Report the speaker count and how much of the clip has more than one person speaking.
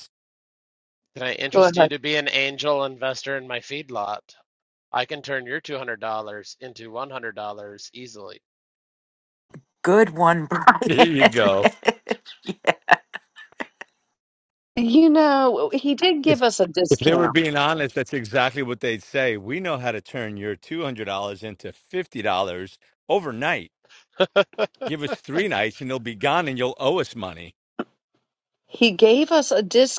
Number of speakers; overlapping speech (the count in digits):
4, about 4%